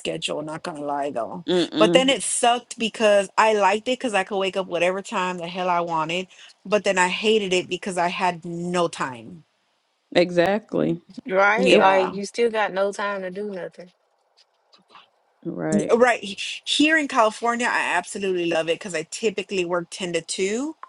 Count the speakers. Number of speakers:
three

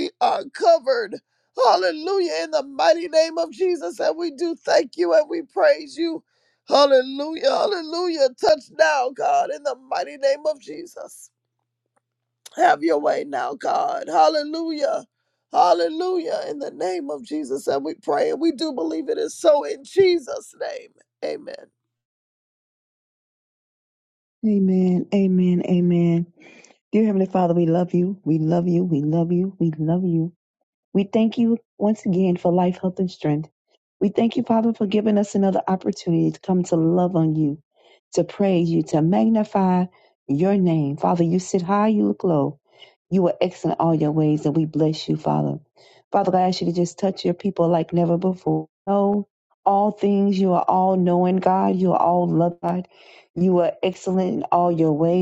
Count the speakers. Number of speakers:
two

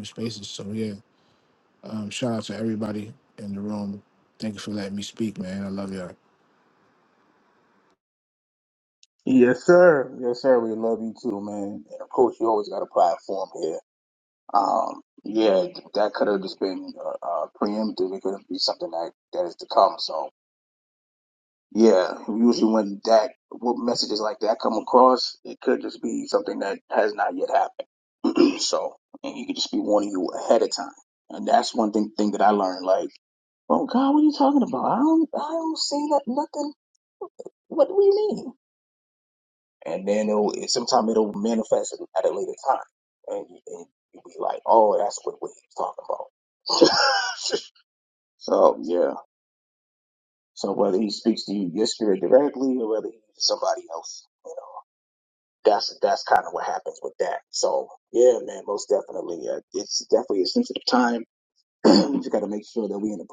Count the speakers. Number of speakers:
two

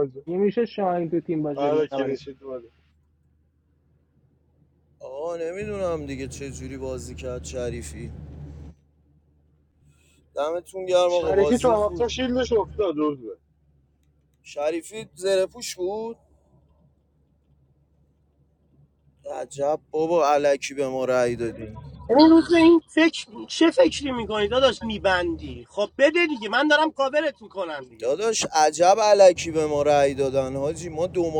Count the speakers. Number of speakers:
four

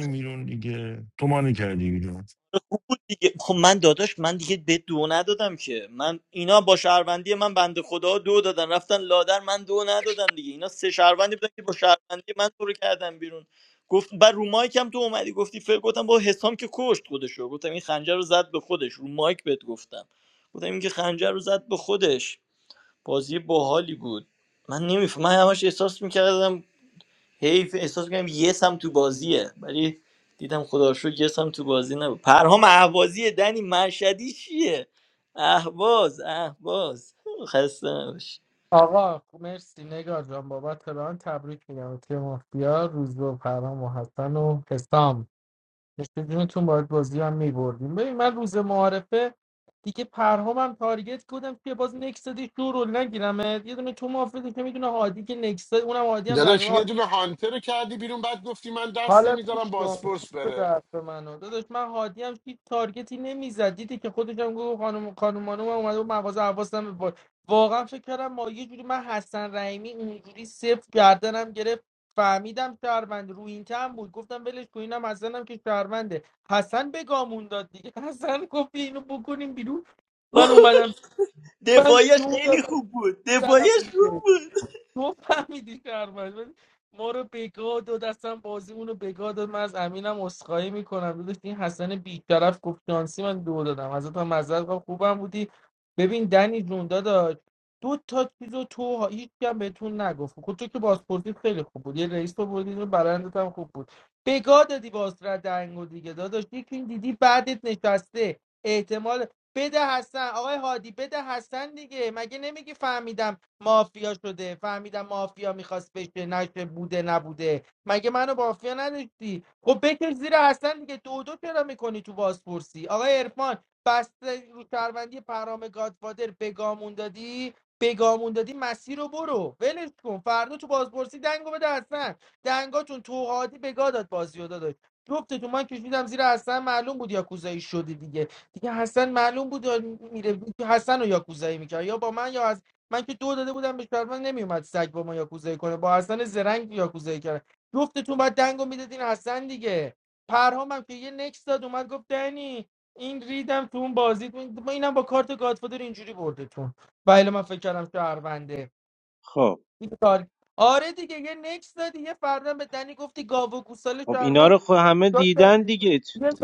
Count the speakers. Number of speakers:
five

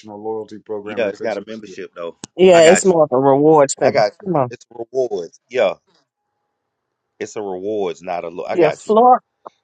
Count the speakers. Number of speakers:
three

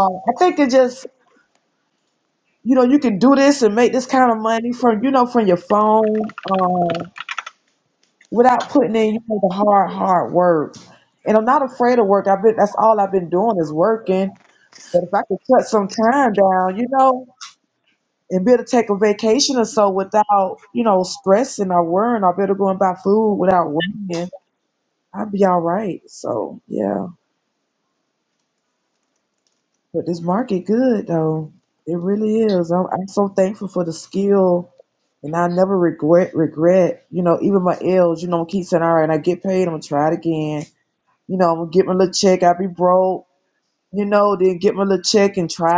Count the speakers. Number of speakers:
one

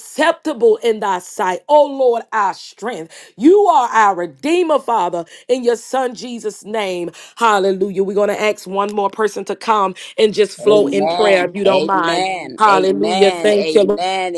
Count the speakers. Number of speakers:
two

